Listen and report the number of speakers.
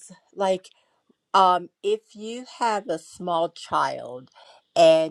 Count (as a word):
one